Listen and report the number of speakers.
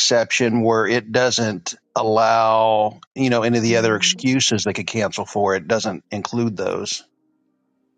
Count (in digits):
1